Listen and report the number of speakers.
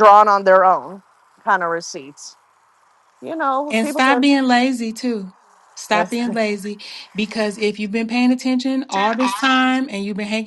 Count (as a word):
two